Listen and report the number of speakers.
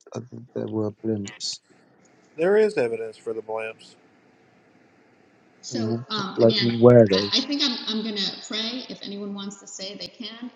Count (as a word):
three